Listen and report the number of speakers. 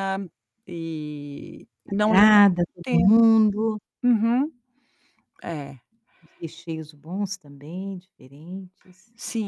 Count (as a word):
two